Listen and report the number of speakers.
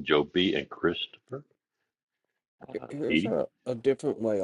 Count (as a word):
two